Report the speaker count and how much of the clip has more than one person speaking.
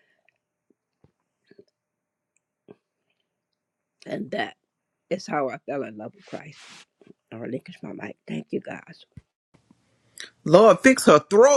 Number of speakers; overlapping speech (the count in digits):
2, no overlap